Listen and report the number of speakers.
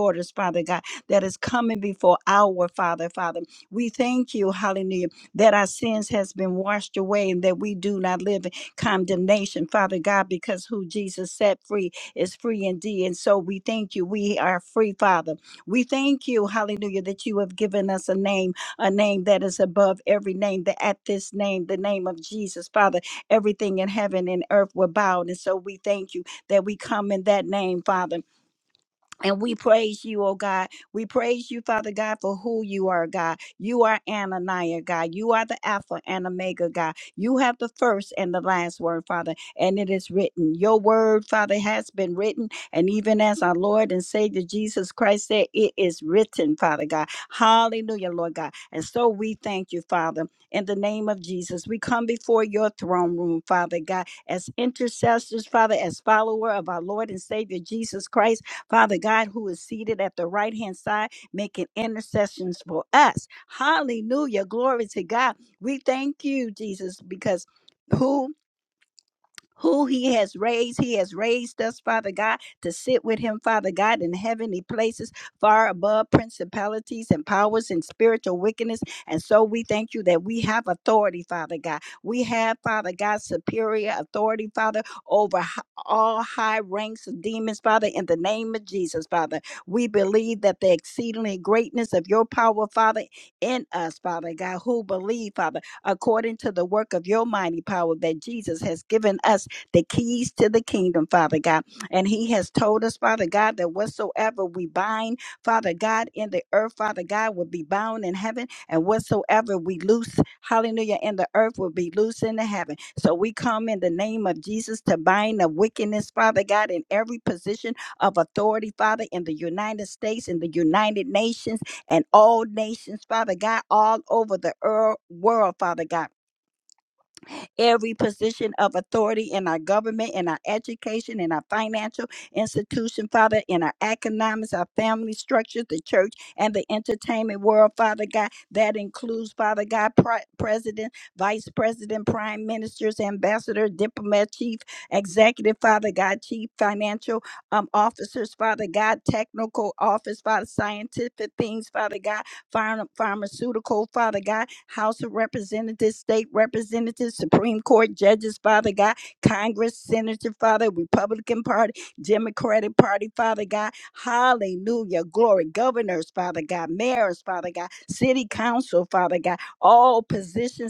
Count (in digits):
1